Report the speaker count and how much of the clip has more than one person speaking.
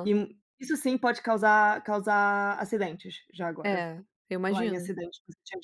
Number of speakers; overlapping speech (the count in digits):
2, about 11%